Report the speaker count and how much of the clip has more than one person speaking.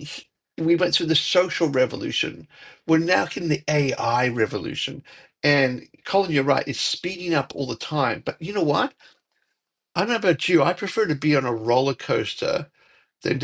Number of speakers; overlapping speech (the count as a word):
one, no overlap